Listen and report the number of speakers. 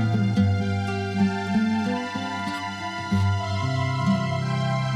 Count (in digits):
0